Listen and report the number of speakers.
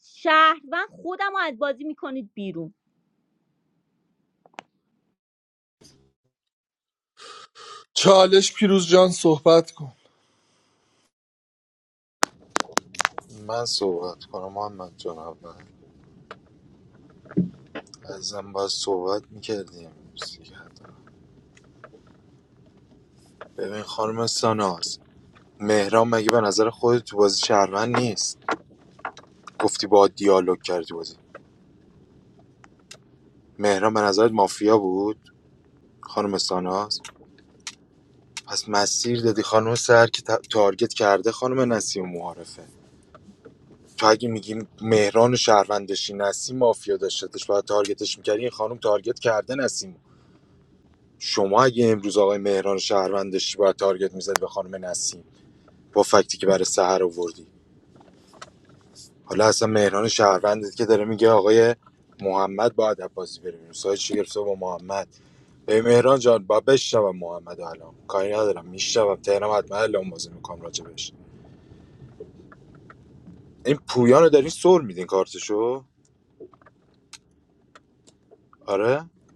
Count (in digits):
3